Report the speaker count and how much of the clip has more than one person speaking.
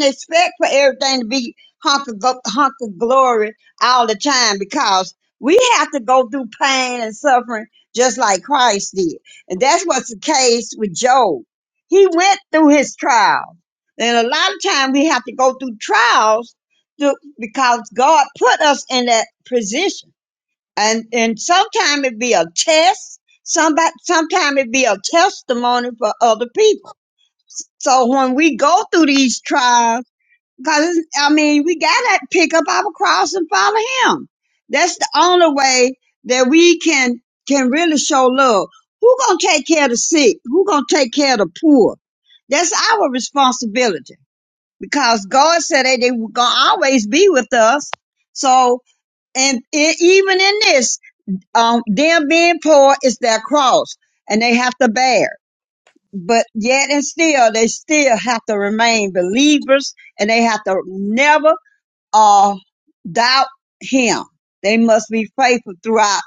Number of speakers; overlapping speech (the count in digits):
1, no overlap